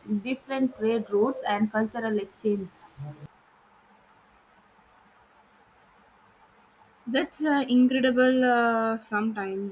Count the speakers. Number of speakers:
2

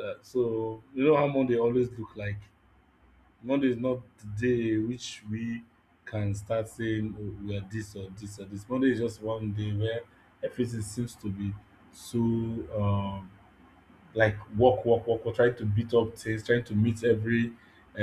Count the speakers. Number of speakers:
1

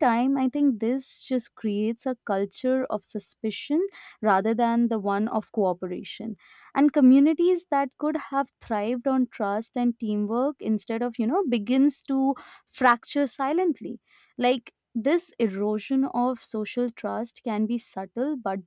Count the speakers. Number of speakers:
1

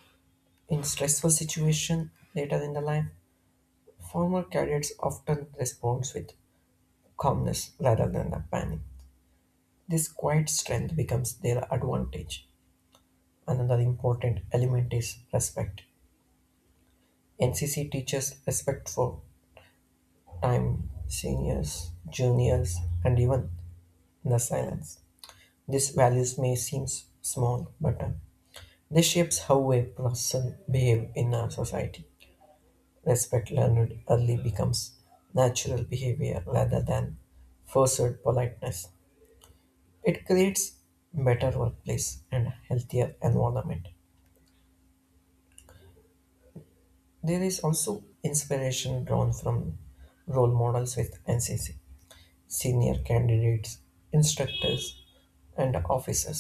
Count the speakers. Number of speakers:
1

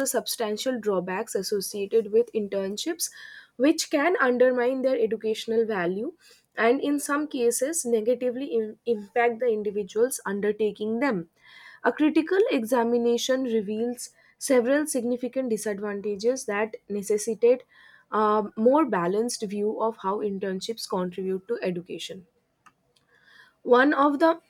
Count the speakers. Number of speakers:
1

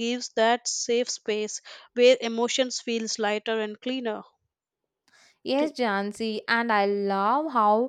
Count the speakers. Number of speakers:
2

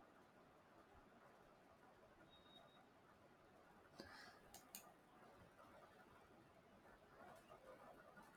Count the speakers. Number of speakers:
0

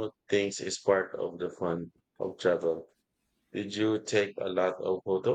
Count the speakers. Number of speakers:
1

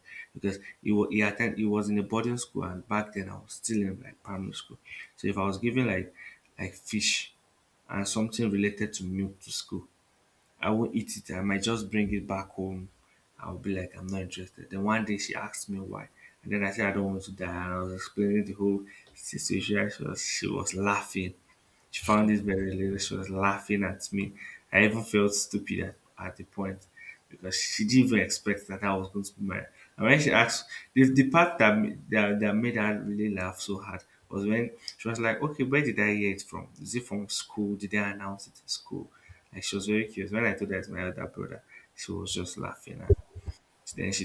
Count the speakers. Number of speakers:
1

